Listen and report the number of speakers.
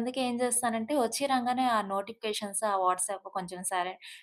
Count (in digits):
1